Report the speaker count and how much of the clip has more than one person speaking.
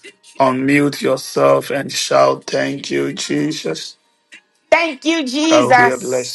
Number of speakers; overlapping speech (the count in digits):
2, about 8%